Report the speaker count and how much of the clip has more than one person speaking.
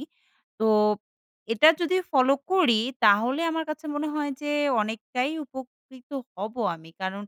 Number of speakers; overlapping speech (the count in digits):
1, no overlap